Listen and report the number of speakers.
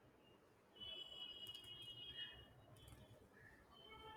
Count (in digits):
0